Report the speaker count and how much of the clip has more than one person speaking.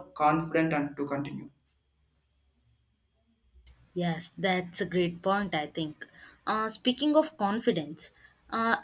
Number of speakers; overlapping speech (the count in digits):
2, no overlap